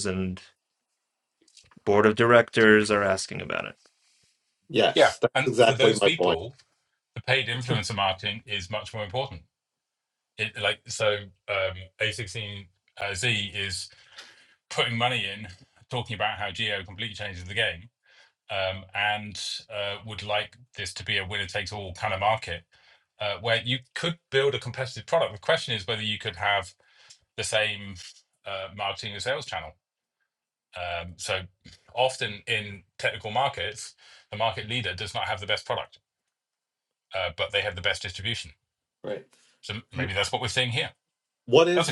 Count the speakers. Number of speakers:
3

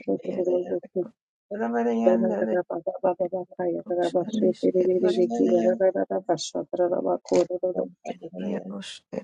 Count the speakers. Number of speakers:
3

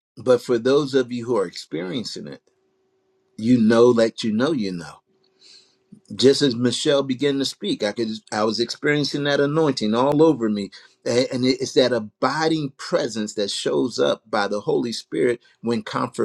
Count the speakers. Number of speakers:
1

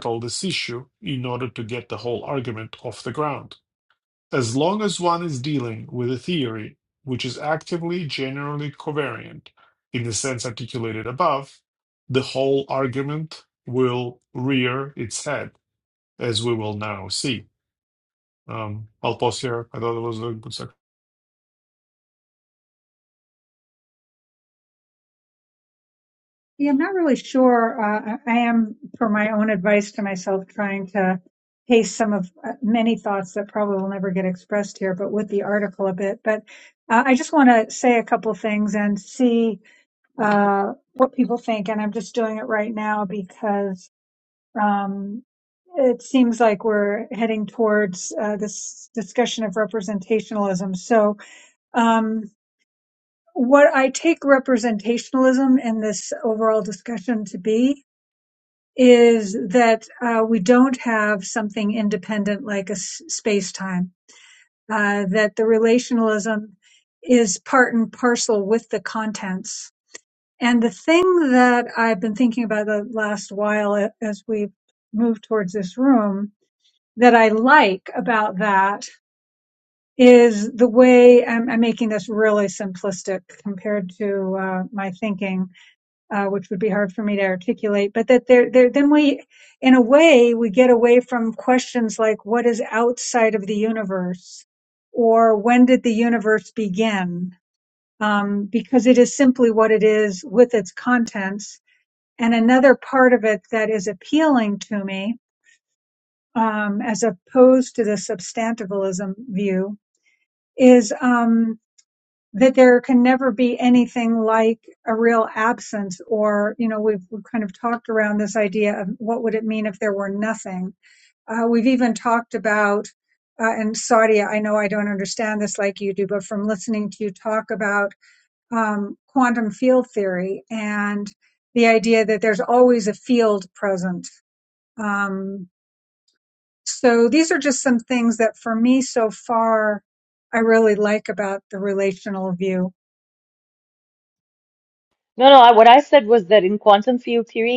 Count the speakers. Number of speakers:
3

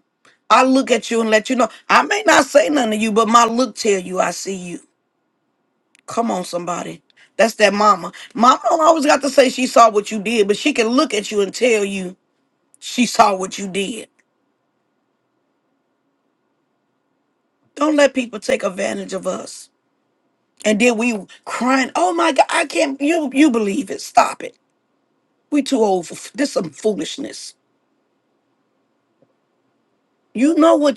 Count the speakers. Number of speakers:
1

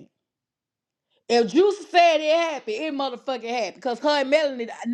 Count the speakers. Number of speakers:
1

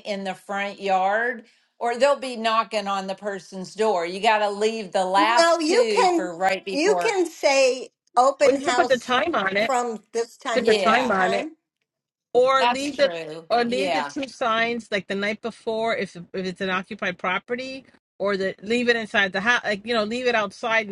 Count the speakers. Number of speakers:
3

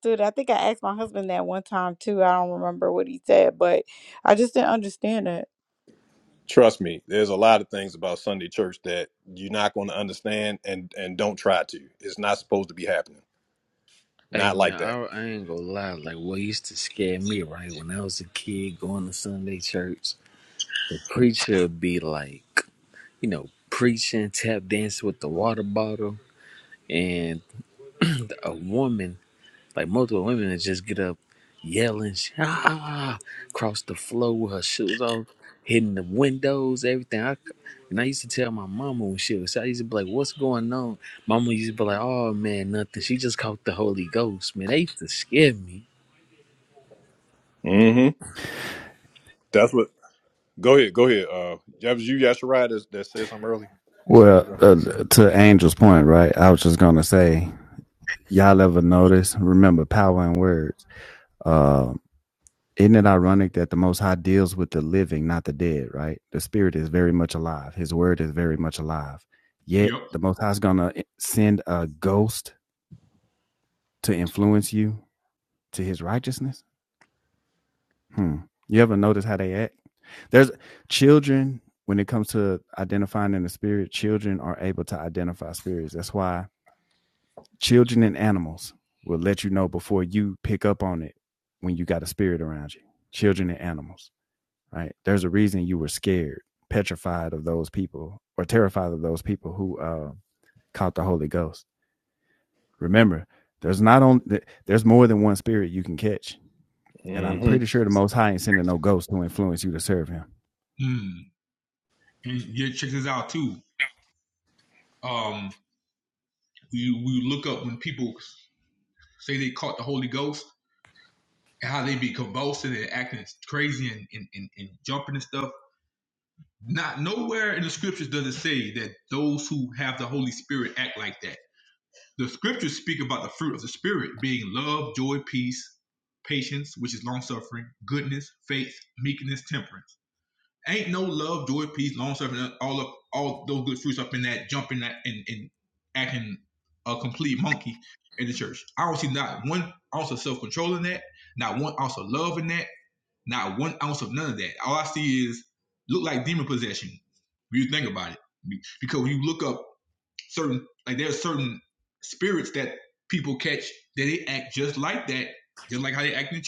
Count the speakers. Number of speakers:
5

